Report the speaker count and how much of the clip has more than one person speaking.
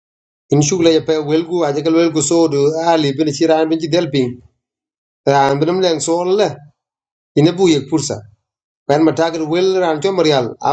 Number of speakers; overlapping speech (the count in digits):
1, no overlap